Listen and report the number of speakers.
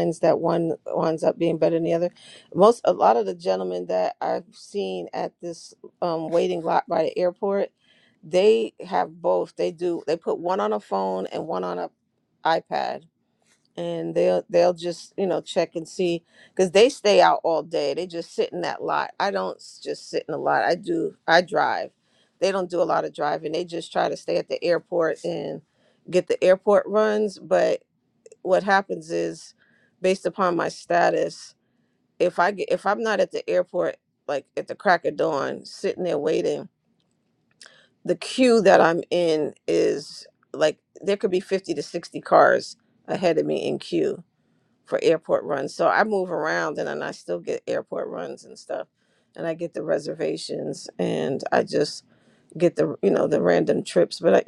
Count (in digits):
1